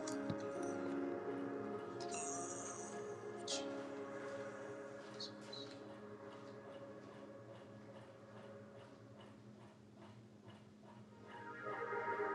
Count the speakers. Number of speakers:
0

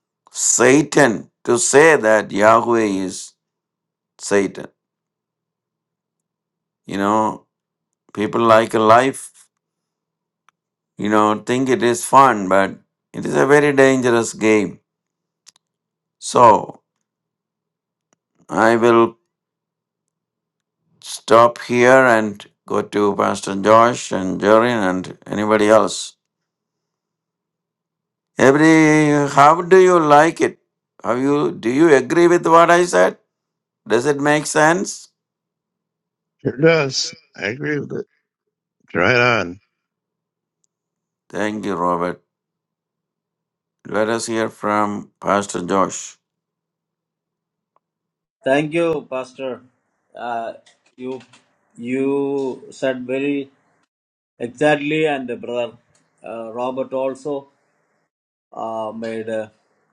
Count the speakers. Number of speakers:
3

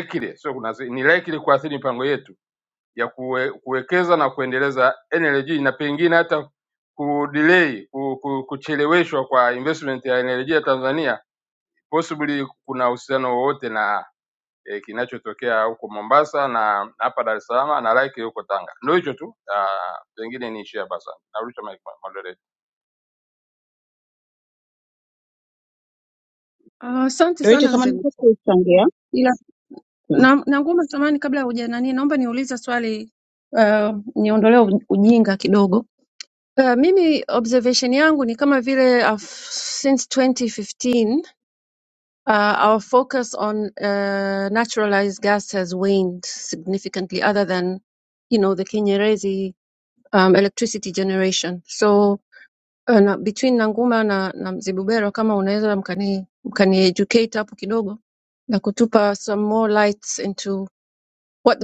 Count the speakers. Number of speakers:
3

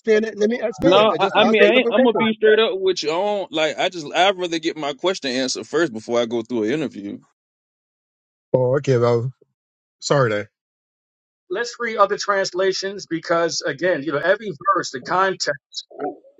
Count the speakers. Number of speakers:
3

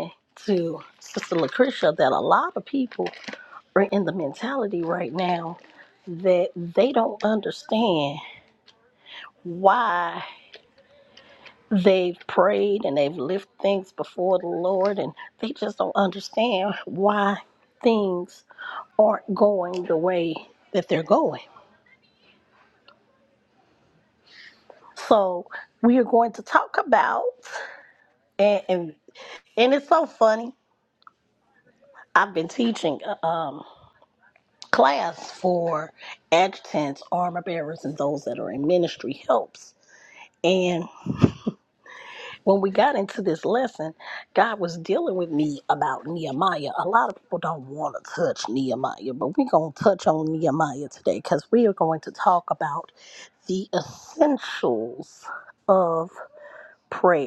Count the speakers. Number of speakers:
1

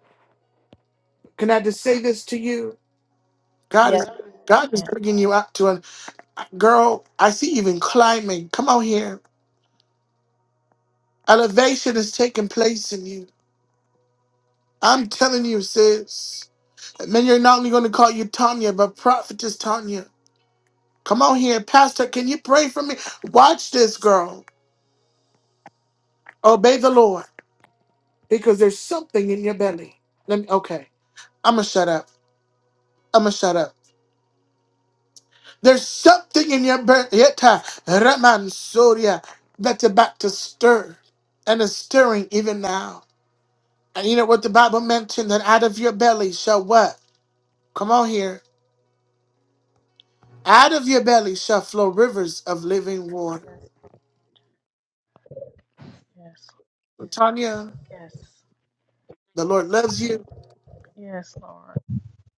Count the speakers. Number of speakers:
2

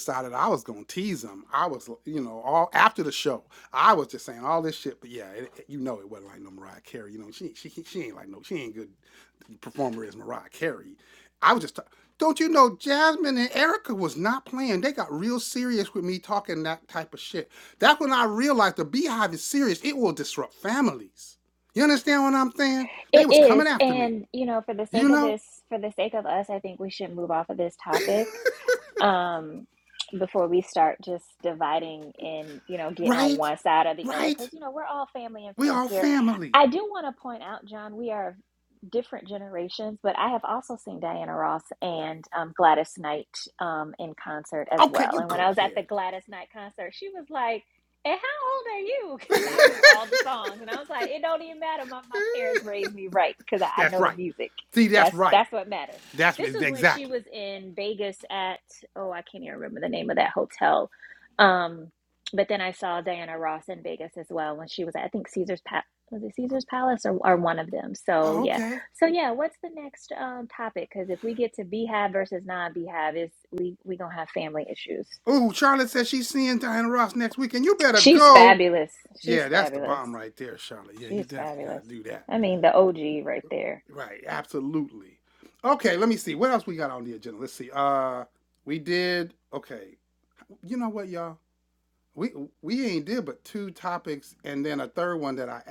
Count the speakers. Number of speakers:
2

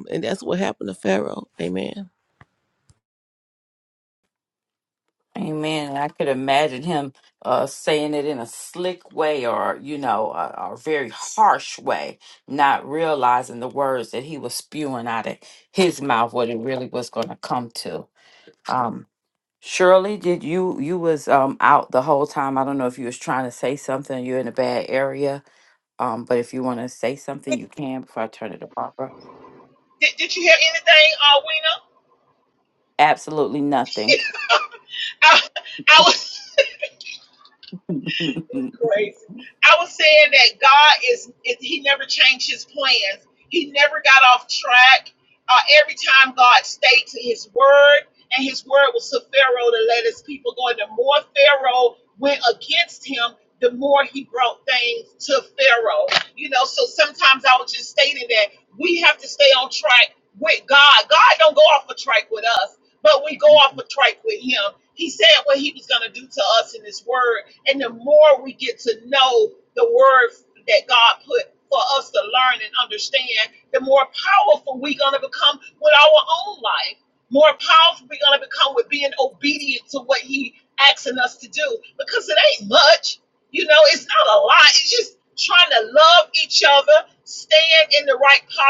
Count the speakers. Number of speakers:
3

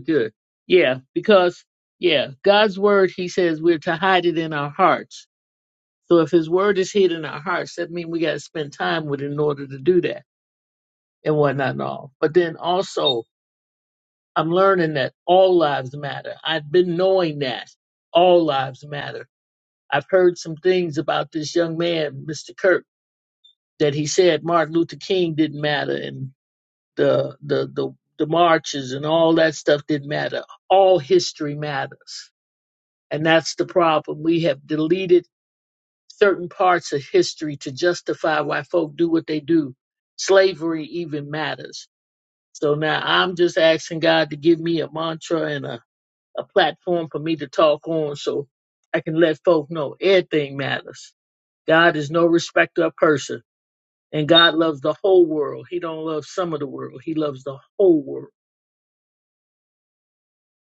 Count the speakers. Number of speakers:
1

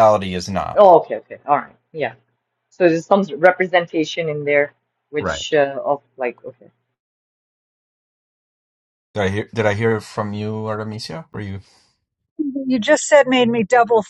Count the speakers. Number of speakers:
3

